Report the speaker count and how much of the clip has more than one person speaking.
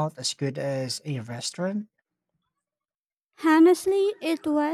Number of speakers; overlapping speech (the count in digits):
2, no overlap